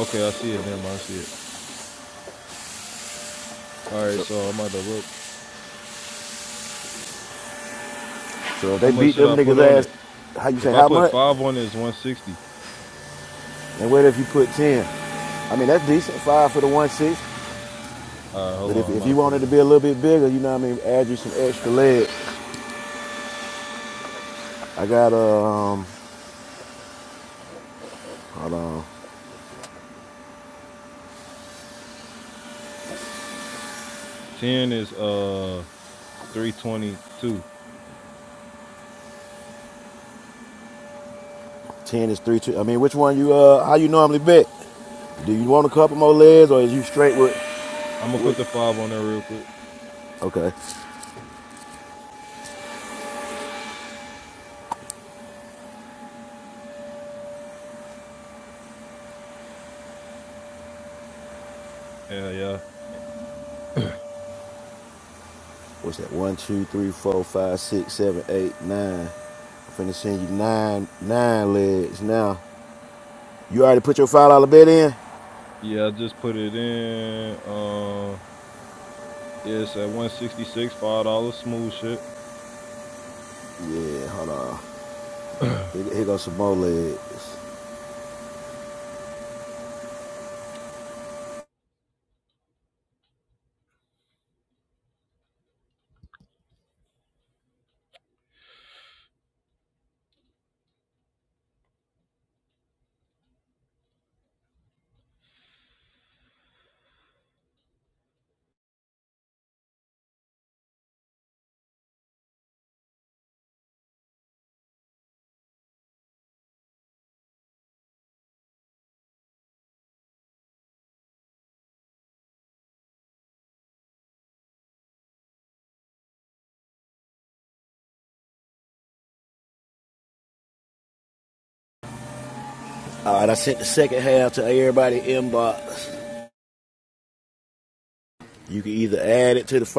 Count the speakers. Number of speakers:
2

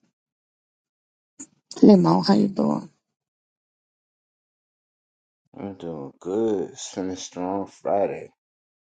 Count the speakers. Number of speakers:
2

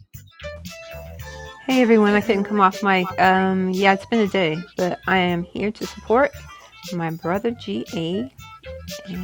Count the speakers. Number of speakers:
1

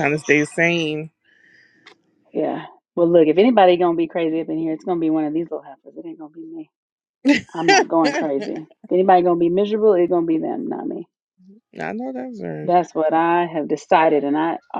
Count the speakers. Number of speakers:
2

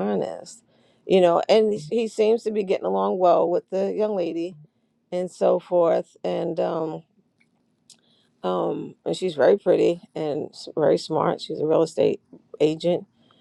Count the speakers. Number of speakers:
1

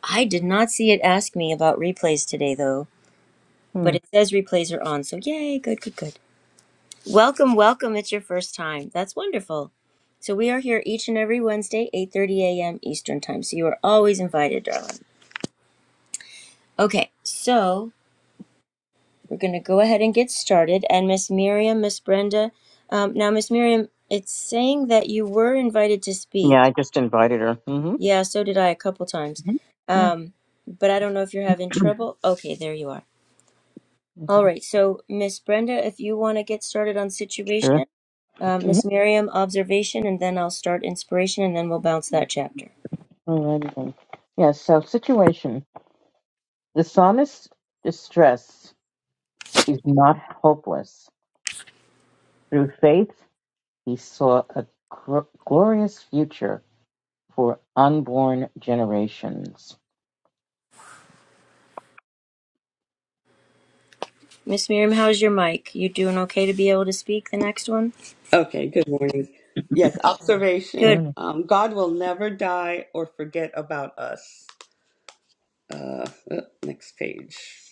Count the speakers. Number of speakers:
3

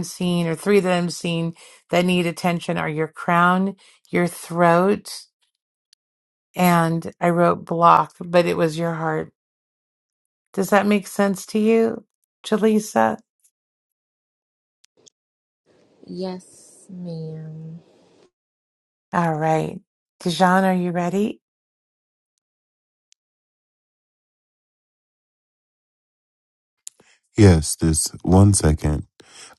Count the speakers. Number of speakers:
3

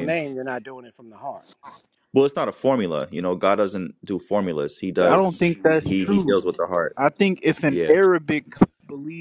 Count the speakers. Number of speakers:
3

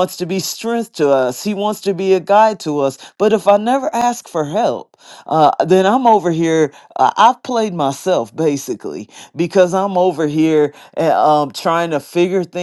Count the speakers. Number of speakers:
1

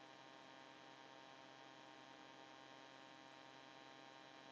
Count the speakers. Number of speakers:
0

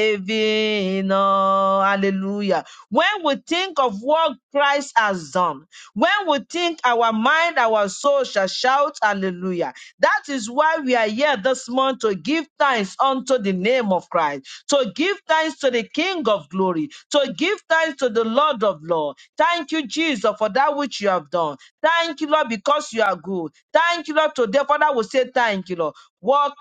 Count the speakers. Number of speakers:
1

